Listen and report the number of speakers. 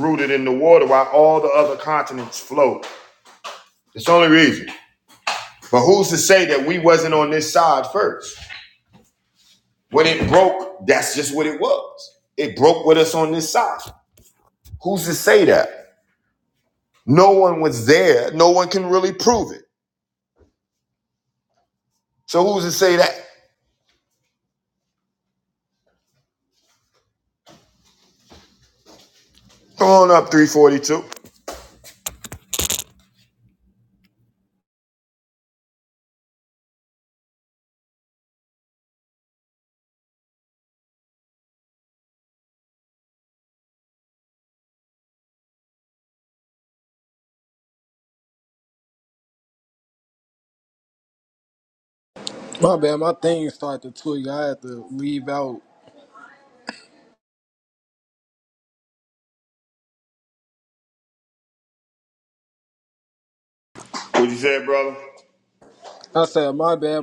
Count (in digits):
2